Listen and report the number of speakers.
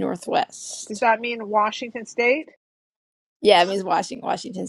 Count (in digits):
2